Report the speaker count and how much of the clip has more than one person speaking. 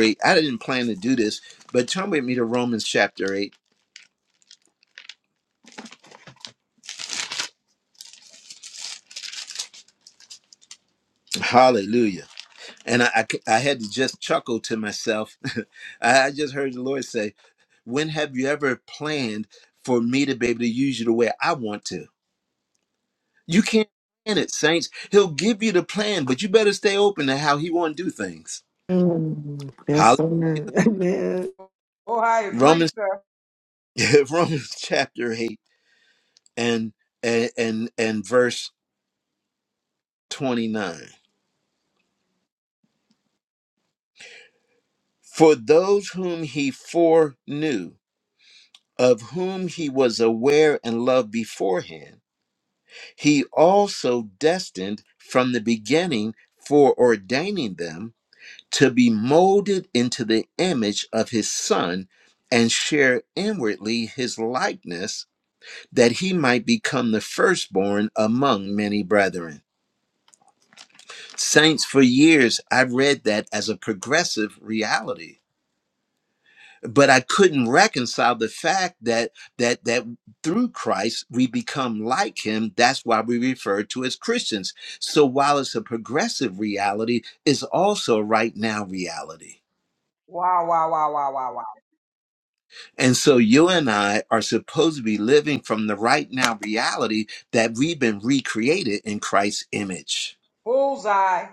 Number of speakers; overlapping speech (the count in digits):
3, about 1%